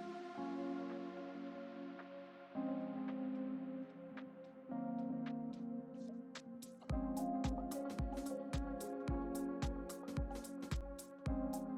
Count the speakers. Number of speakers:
0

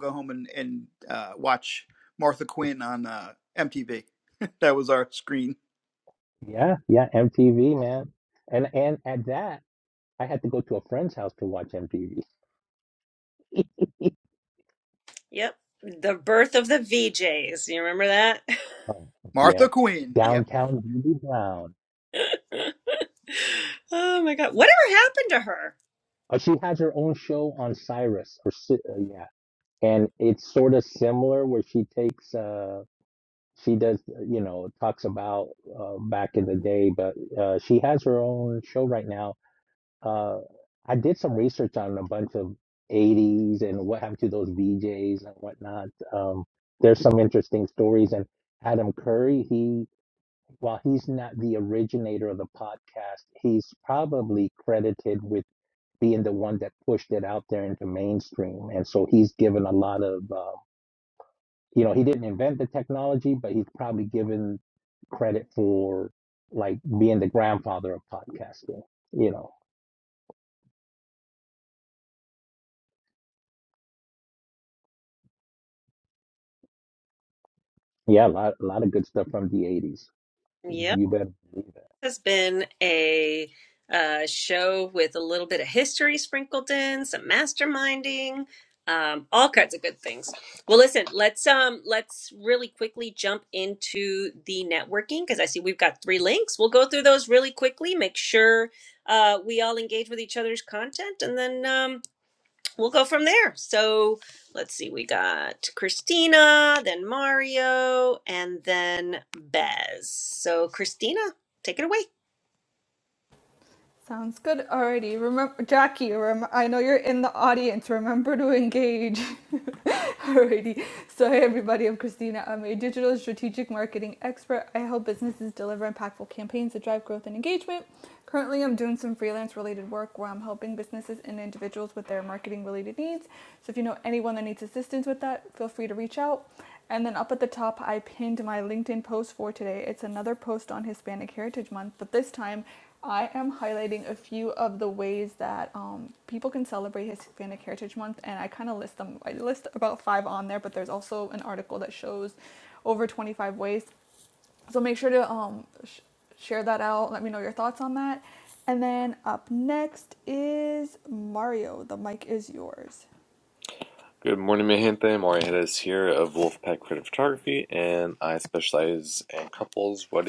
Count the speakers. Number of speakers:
5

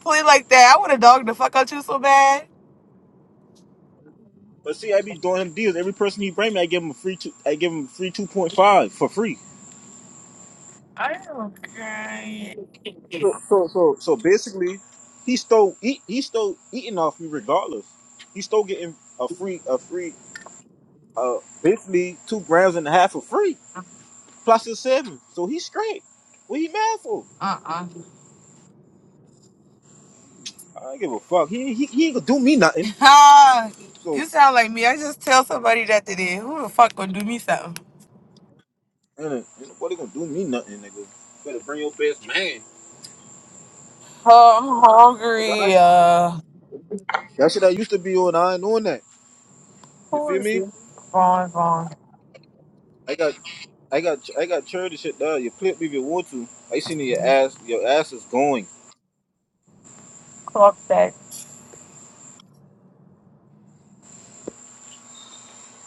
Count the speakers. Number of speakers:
2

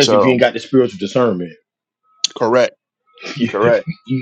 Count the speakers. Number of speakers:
2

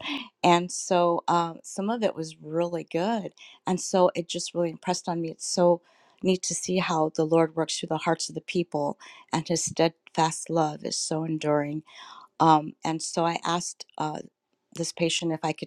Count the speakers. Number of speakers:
1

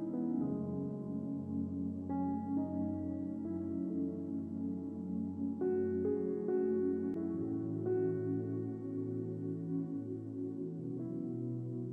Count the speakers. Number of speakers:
0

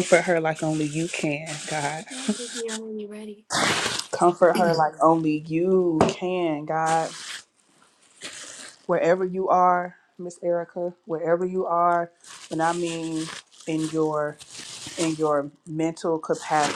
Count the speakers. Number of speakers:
2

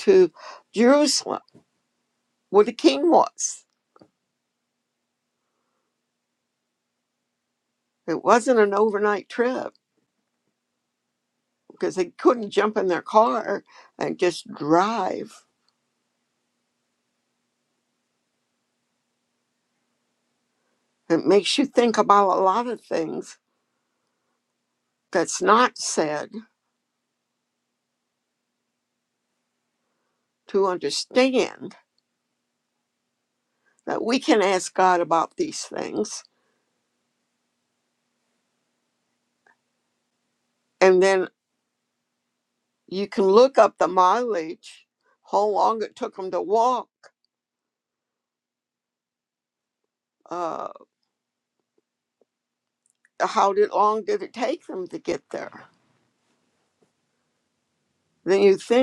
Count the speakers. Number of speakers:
1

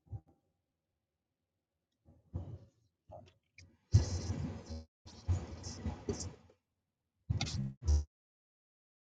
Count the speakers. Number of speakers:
0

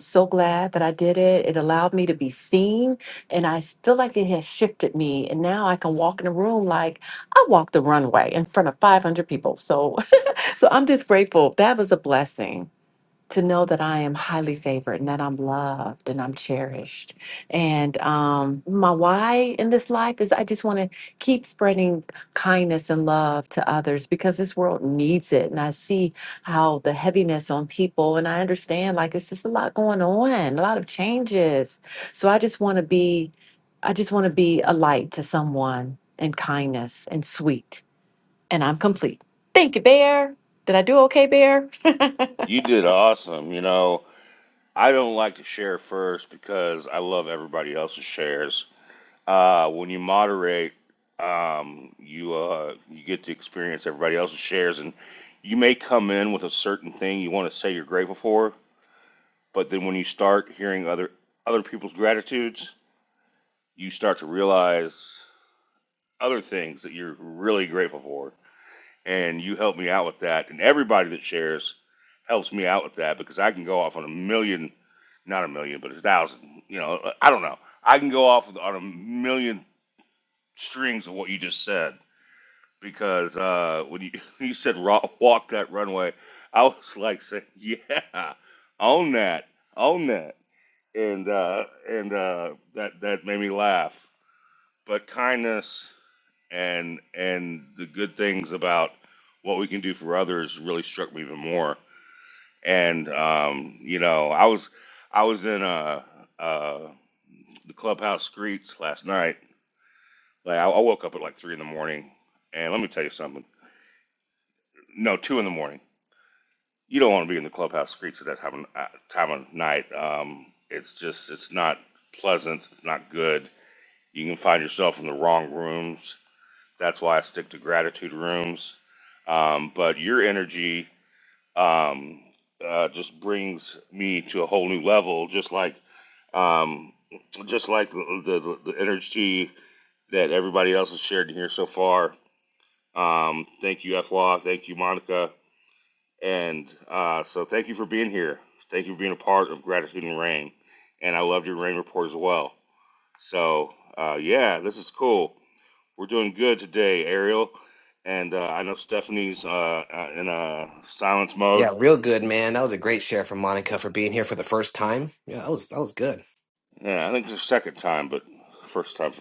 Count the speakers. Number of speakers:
3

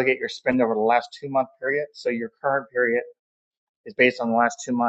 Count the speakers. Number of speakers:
1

